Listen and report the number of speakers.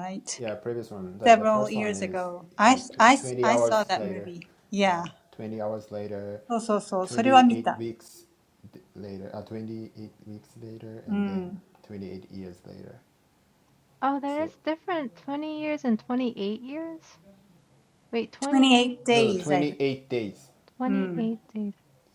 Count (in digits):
3